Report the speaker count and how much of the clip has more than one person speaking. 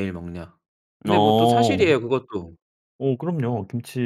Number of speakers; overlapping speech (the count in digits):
2, about 22%